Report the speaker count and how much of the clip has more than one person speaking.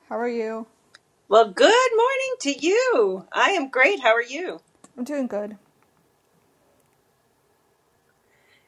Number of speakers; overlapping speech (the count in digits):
2, no overlap